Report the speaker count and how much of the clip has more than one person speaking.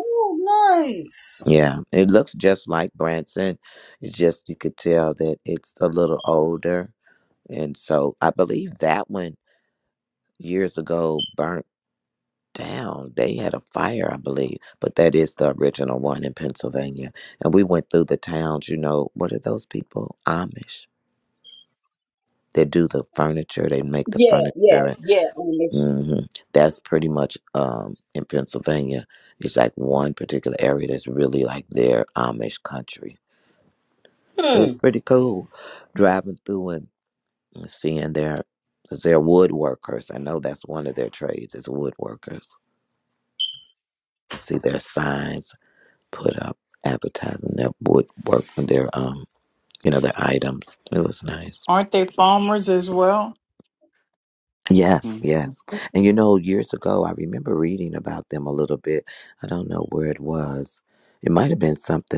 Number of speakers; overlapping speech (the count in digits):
3, about 2%